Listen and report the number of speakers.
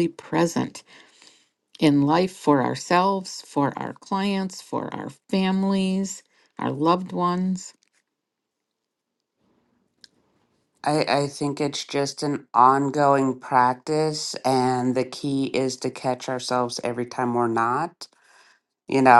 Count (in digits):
2